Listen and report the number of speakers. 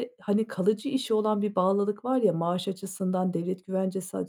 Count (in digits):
1